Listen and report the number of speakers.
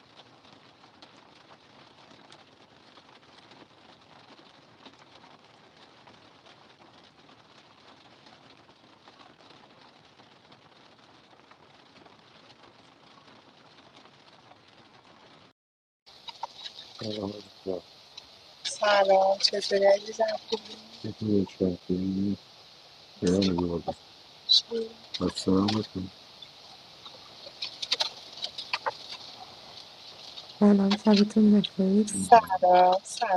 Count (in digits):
3